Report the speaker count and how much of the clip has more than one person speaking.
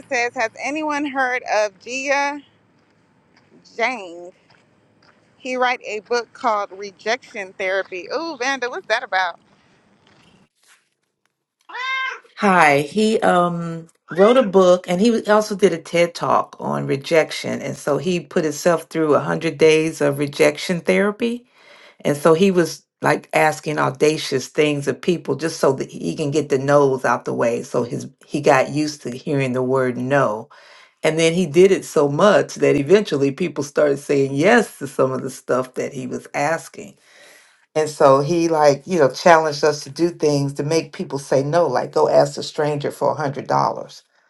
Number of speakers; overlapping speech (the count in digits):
2, no overlap